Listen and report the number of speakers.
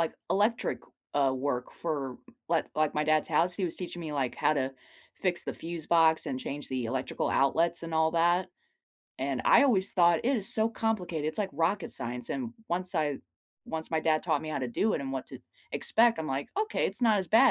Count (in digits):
1